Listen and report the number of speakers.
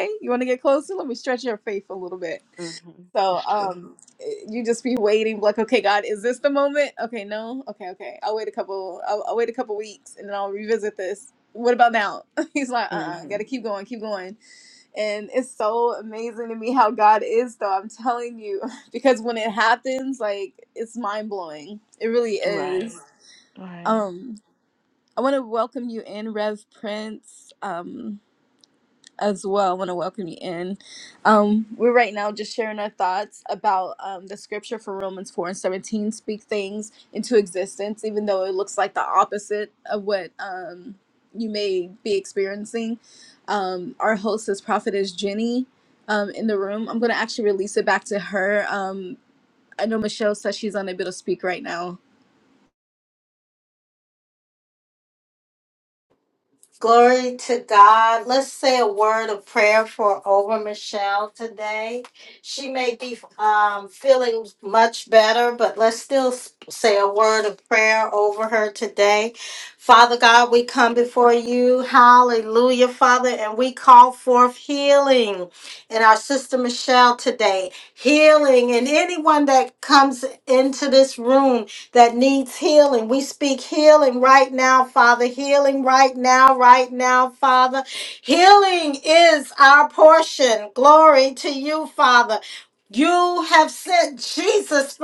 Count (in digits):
3